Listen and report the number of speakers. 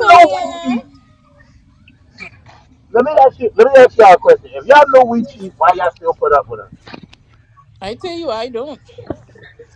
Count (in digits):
2